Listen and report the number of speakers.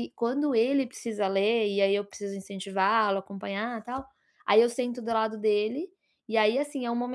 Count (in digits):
1